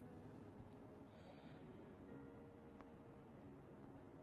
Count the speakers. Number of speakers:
zero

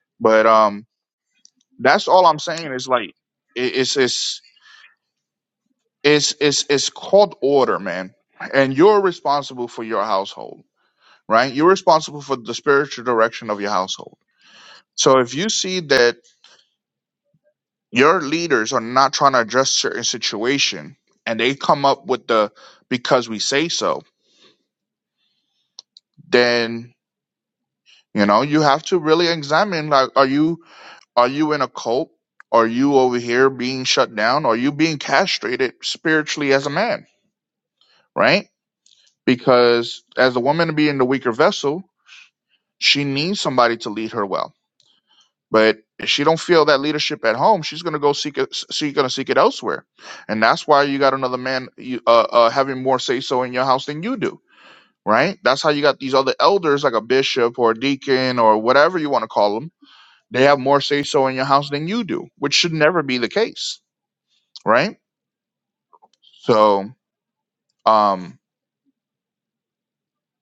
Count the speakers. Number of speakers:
one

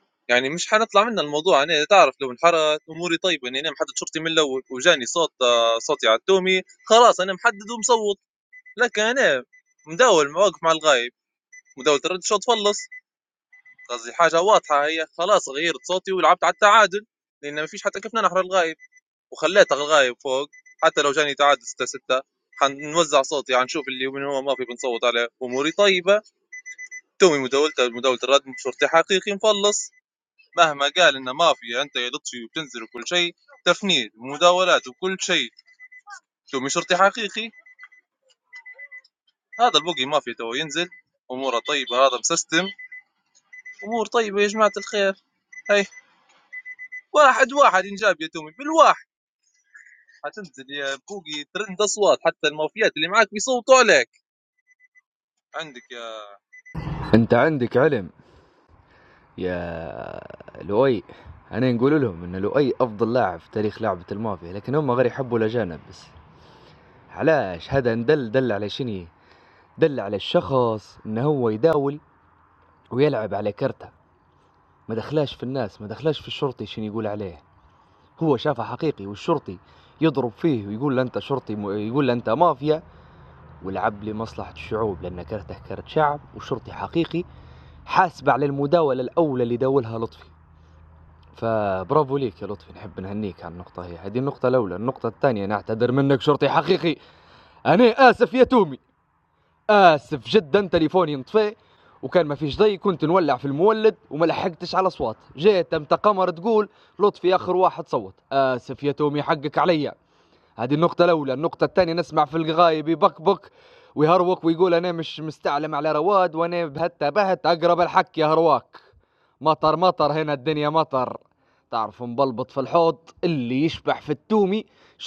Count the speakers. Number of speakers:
two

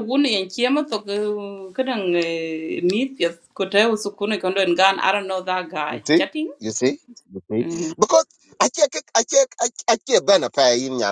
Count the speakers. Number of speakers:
two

